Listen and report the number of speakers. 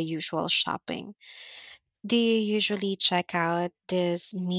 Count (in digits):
1